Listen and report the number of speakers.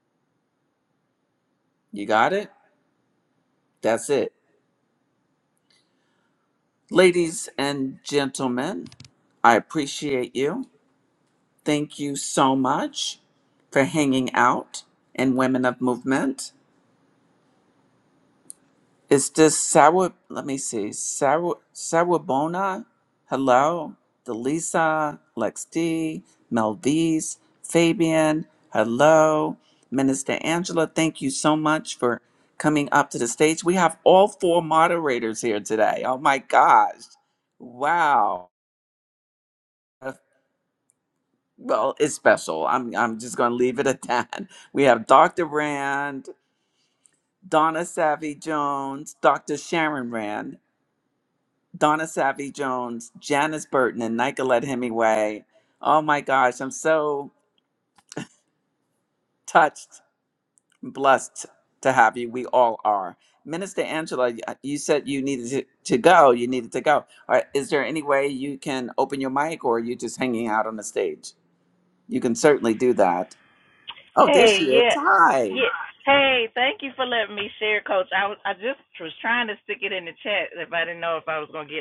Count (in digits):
2